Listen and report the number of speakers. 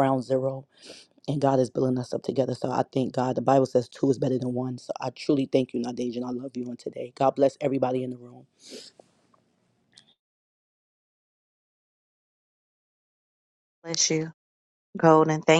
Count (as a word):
two